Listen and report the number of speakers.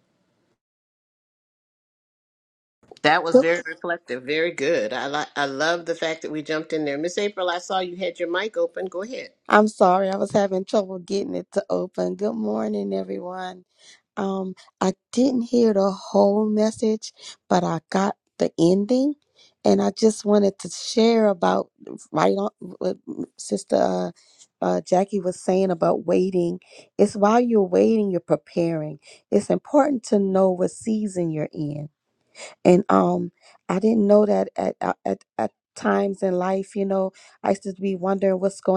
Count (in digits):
2